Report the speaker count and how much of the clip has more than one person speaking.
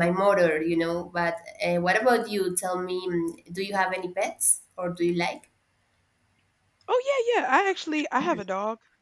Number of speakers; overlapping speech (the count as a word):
two, no overlap